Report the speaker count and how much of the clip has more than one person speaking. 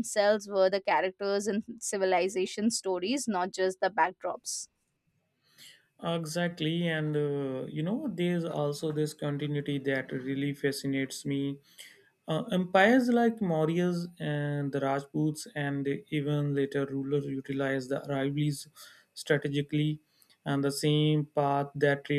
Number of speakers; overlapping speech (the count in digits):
2, no overlap